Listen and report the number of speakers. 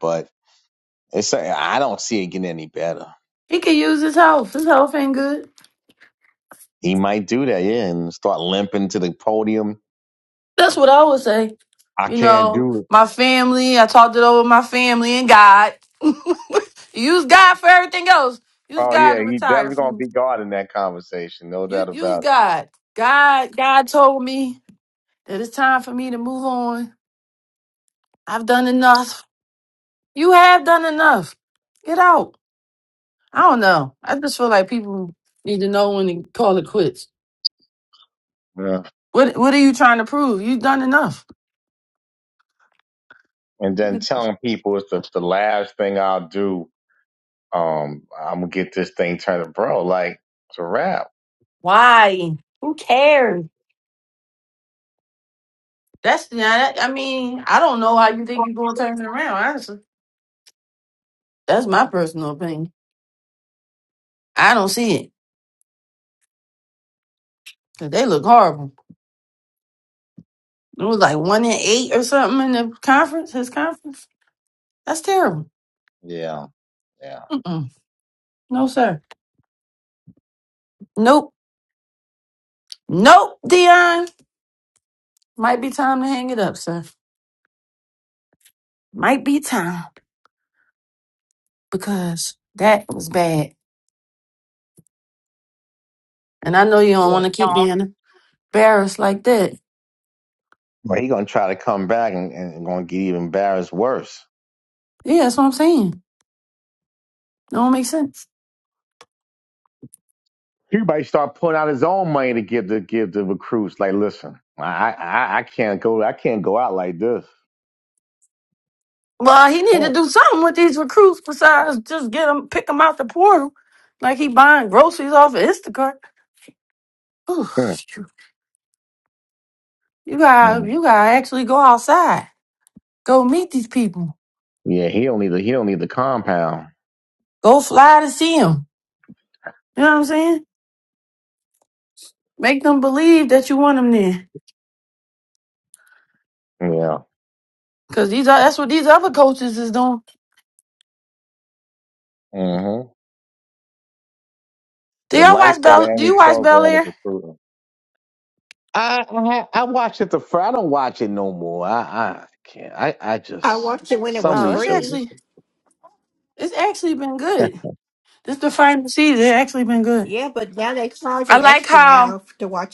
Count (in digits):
3